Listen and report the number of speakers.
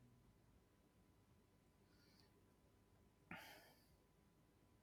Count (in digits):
0